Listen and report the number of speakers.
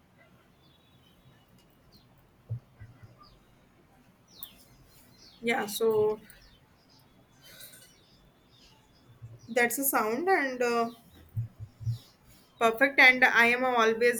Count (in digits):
1